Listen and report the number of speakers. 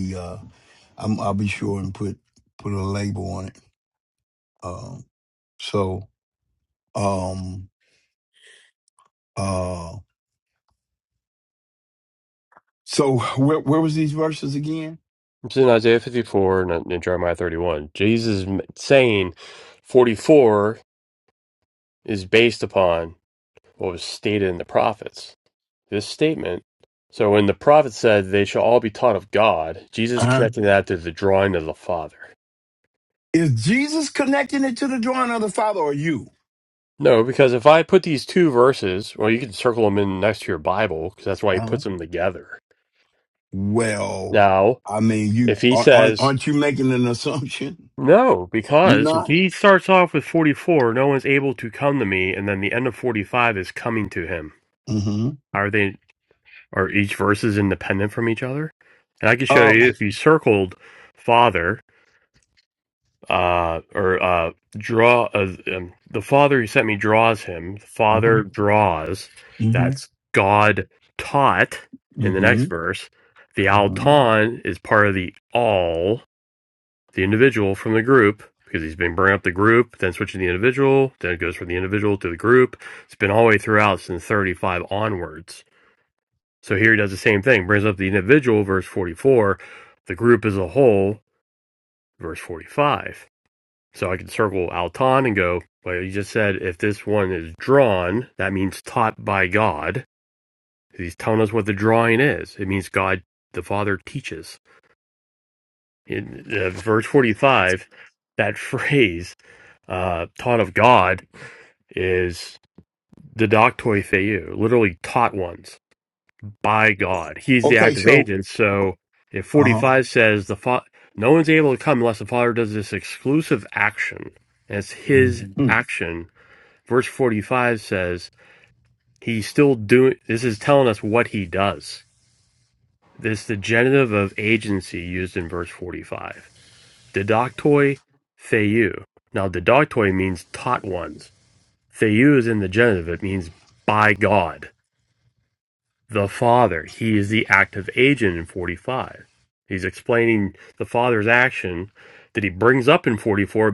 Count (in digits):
2